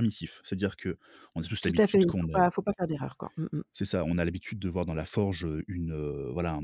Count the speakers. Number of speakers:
two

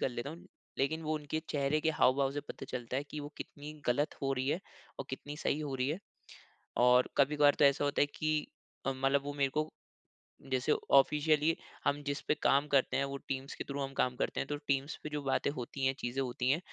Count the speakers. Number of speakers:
one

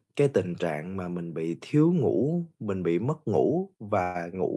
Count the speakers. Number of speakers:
one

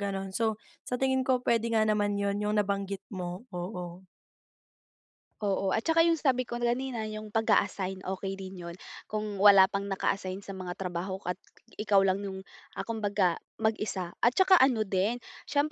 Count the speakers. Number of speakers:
two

